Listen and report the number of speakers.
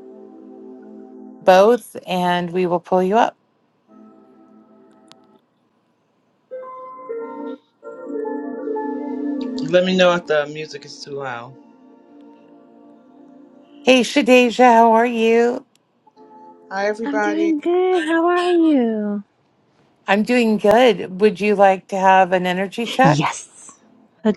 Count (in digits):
3